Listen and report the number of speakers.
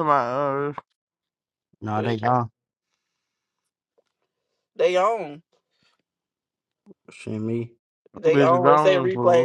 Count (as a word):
three